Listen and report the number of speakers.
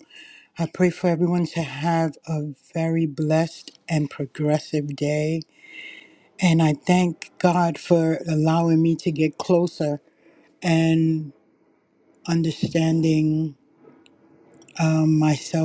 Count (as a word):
one